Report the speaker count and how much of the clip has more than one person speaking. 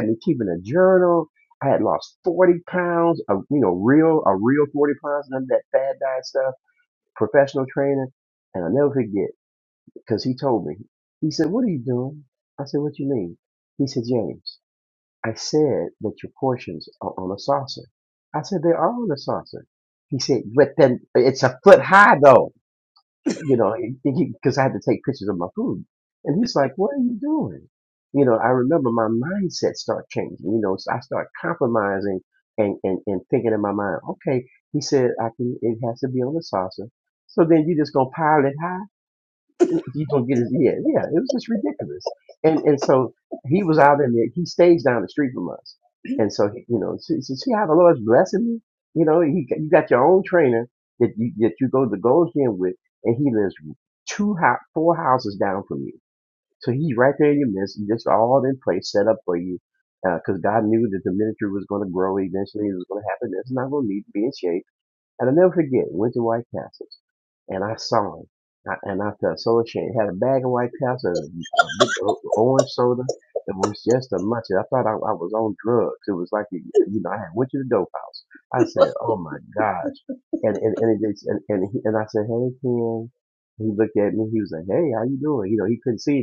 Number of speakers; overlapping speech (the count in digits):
1, no overlap